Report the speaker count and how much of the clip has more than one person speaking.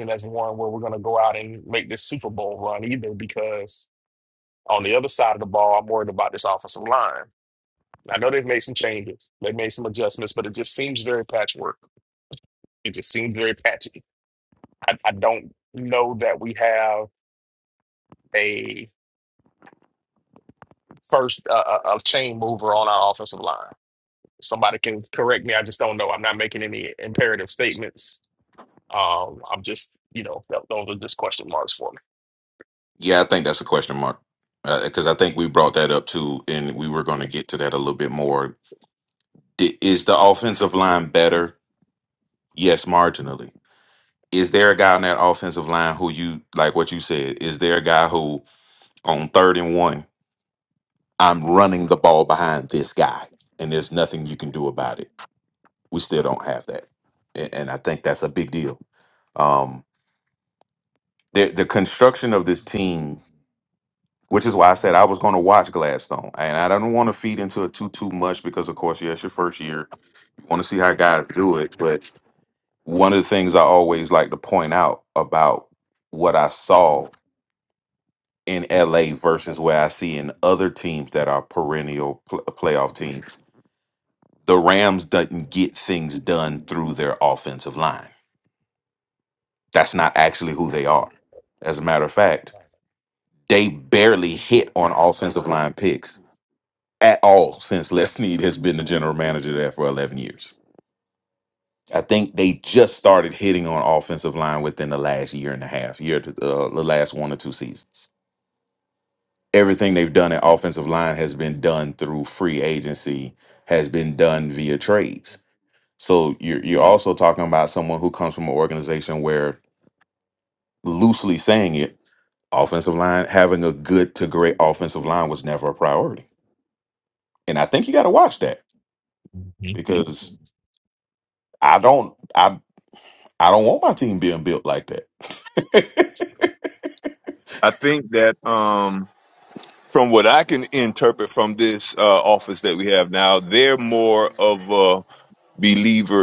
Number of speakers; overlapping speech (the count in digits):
3, no overlap